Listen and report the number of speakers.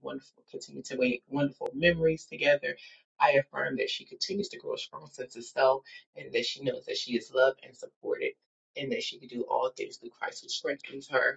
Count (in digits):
1